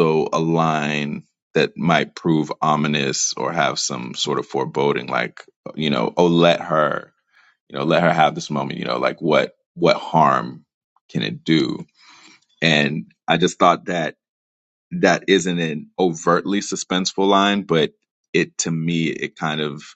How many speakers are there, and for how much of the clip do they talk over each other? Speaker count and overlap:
1, no overlap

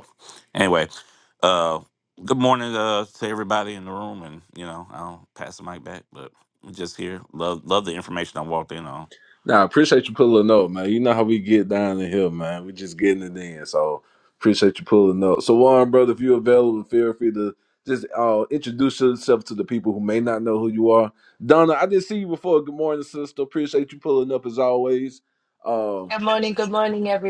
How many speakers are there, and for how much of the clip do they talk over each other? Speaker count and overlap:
3, no overlap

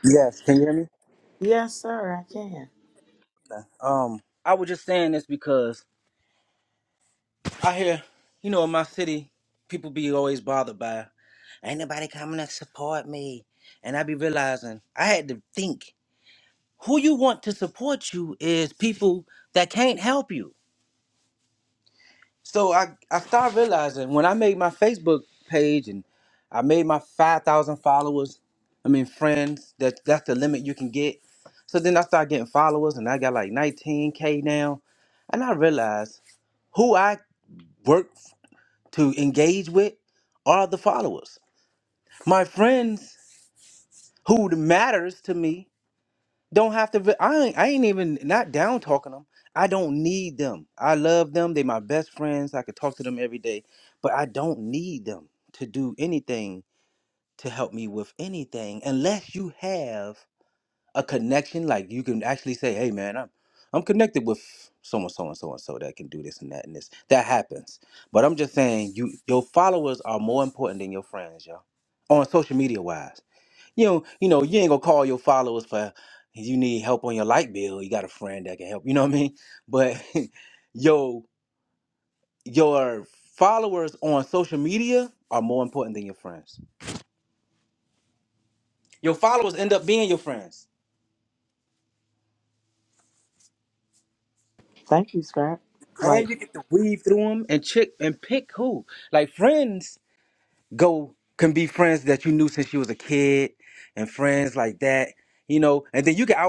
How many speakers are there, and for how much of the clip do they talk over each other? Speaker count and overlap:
2, under 1%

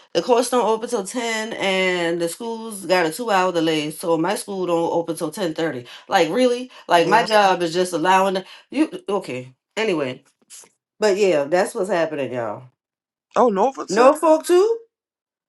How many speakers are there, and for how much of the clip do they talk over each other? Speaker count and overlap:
2, about 4%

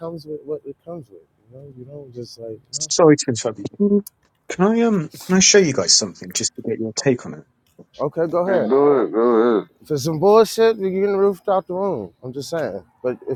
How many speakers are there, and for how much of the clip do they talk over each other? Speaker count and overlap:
3, about 2%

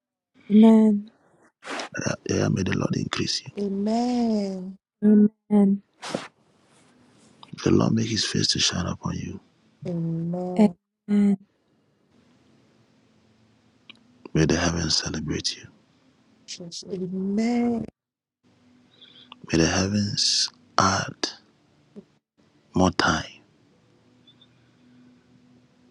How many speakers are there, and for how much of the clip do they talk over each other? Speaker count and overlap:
3, no overlap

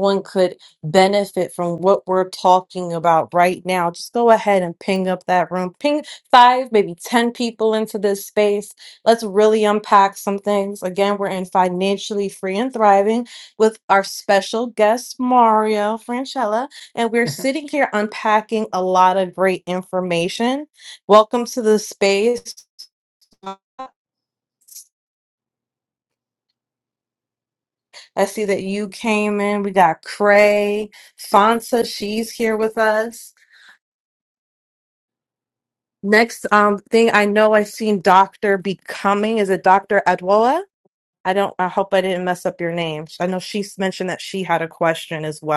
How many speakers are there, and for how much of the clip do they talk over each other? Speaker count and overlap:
1, no overlap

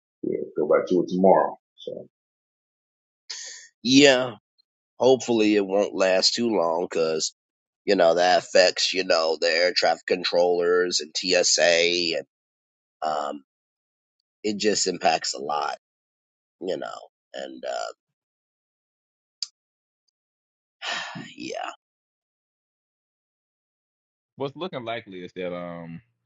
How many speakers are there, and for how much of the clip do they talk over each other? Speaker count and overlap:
3, no overlap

